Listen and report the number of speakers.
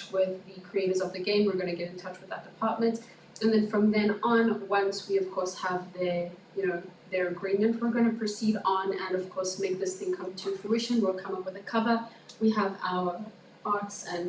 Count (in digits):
1